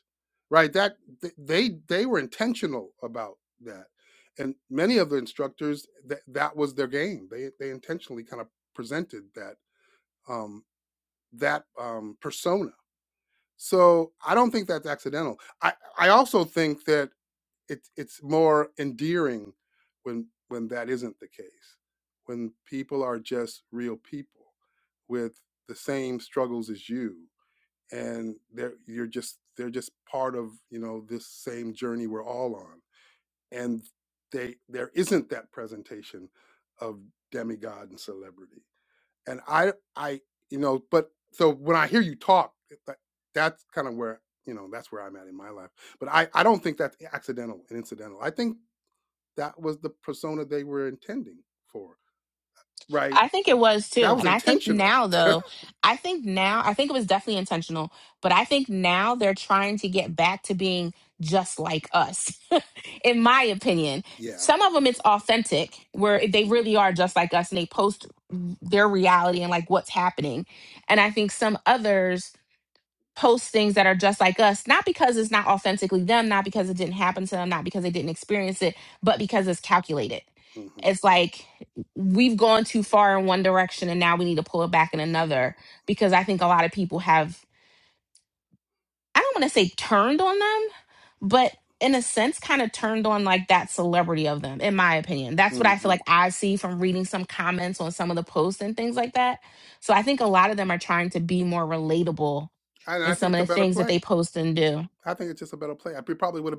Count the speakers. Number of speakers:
two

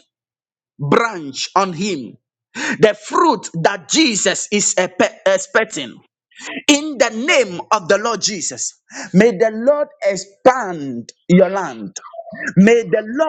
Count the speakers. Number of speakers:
one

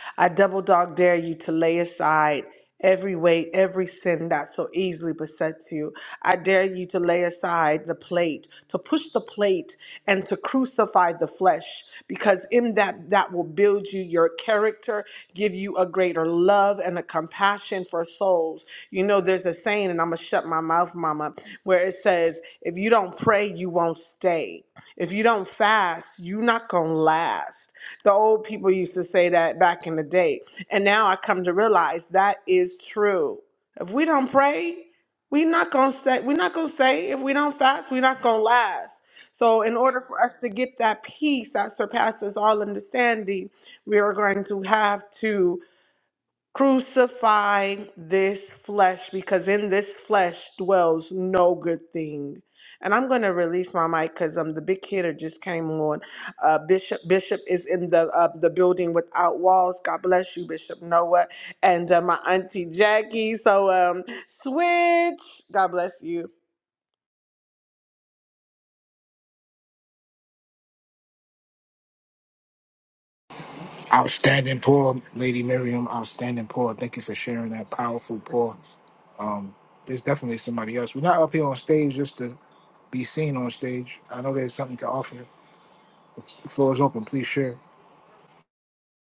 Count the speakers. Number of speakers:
two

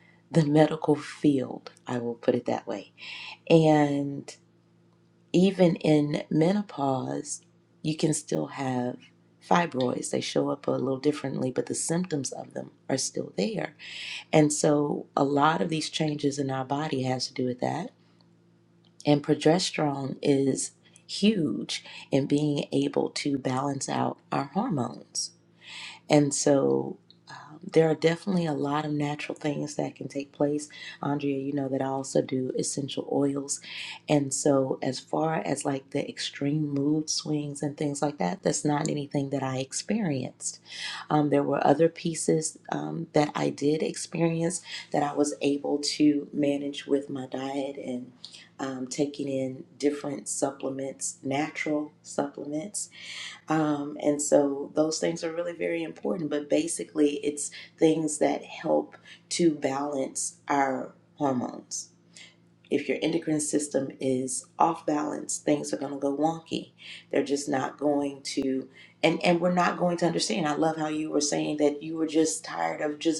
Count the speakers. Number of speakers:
one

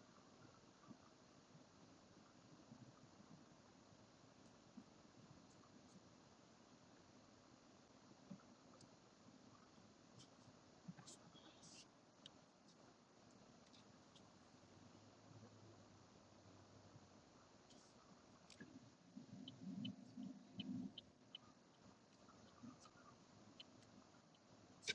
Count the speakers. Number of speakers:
zero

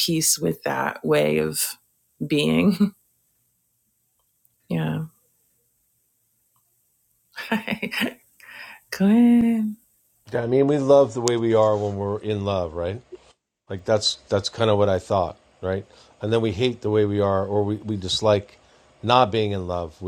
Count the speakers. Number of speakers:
two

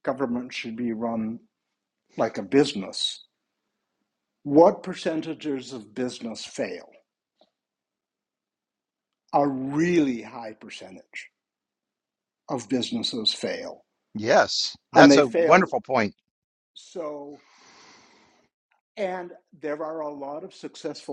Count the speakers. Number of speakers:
two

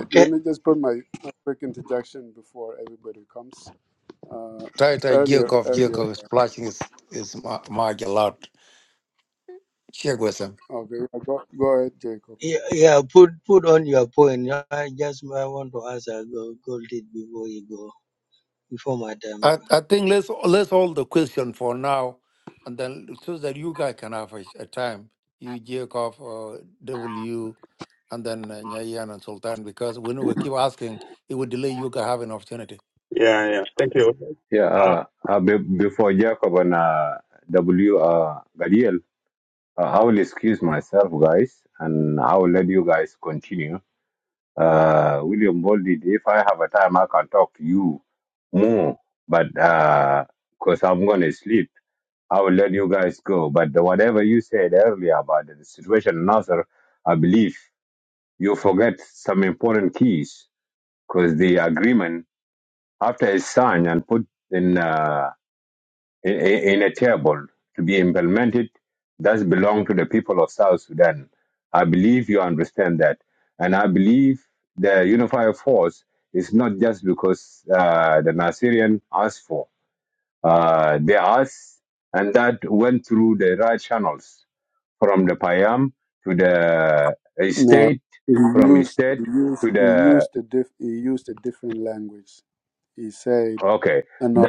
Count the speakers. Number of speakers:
five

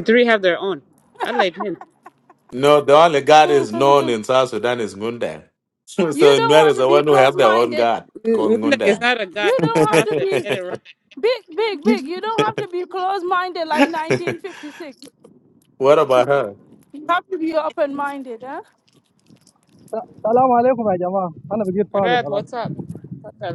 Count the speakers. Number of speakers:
four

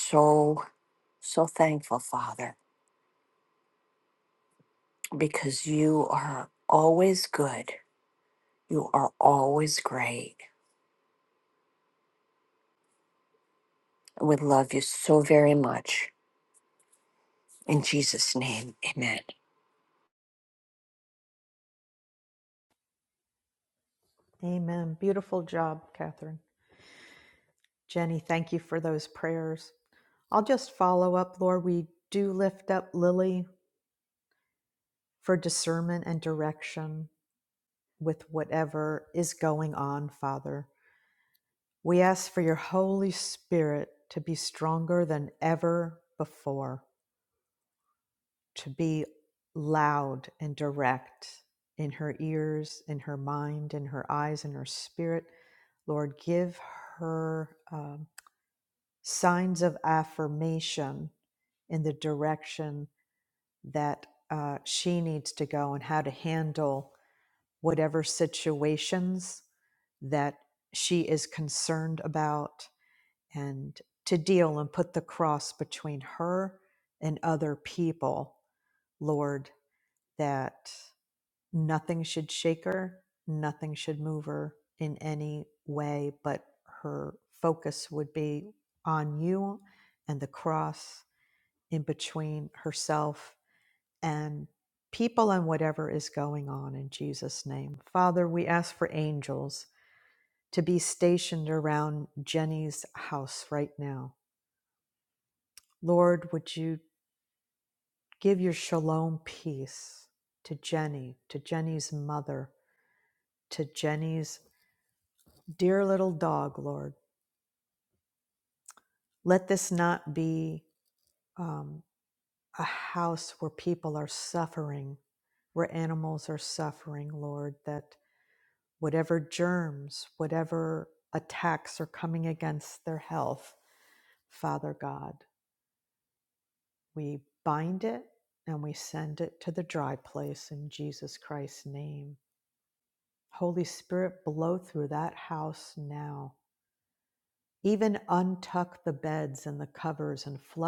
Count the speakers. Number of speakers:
two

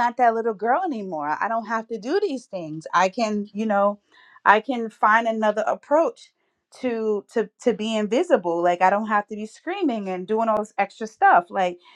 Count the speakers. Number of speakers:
one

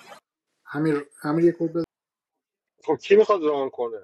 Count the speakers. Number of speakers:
two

